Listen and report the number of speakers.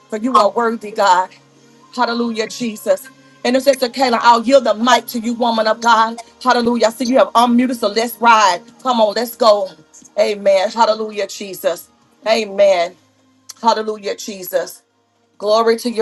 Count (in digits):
1